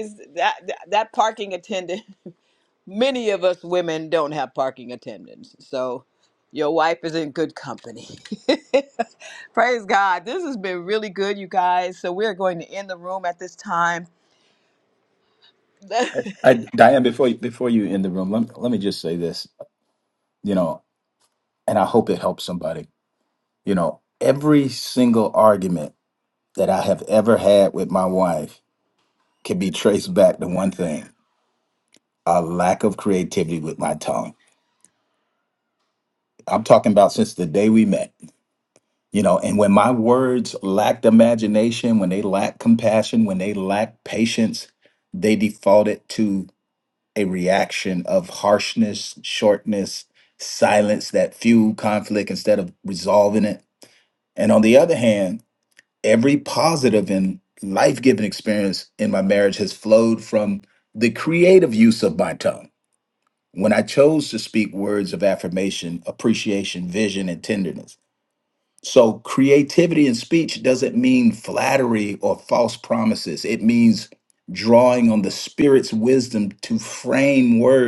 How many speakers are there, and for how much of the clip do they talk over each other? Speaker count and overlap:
2, no overlap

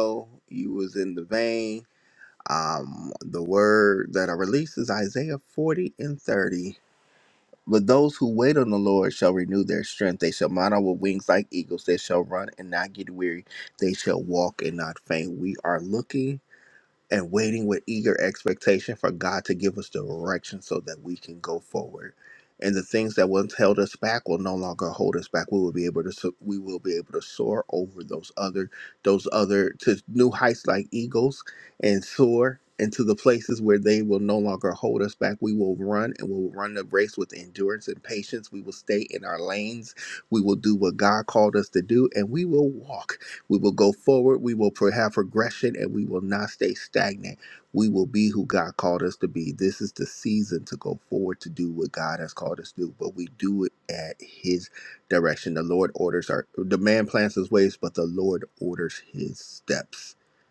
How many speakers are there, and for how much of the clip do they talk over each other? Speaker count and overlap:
1, no overlap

